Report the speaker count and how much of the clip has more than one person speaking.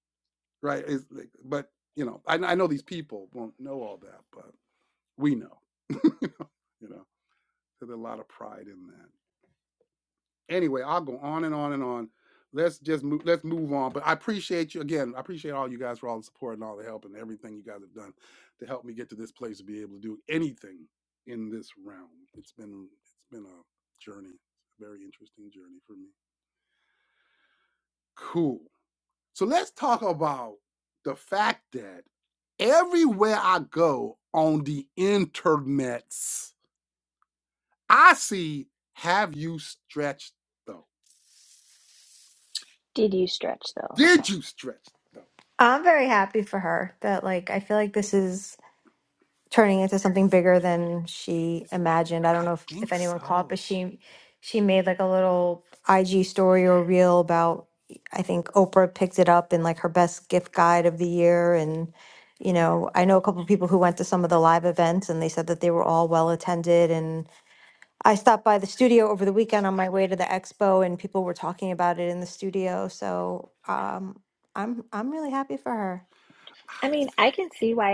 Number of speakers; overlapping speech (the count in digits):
3, about 2%